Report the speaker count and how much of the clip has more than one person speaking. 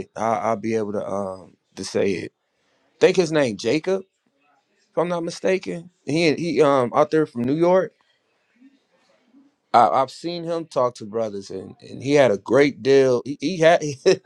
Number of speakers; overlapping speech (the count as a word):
one, no overlap